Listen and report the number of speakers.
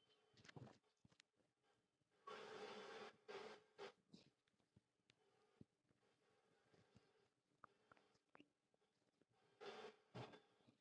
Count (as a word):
zero